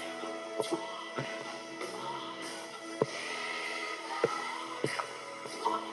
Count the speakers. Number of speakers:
0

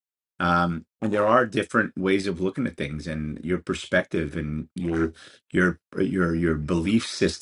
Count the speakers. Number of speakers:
1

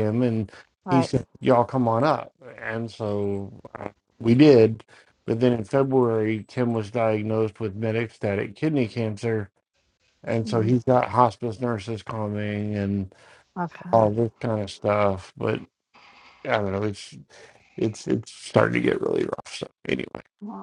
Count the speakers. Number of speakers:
2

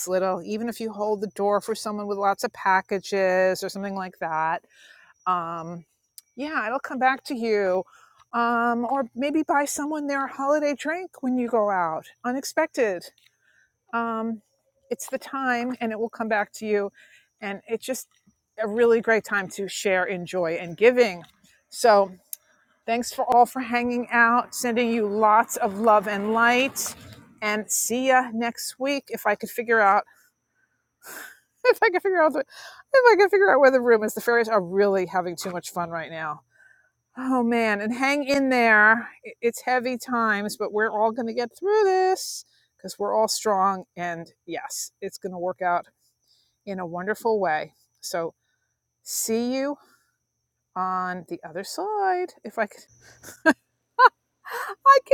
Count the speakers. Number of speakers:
1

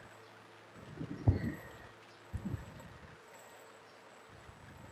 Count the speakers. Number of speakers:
0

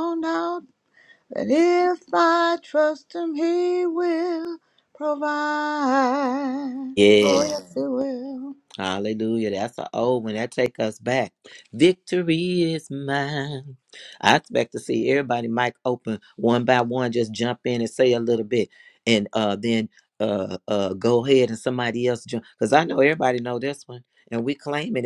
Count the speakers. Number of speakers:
2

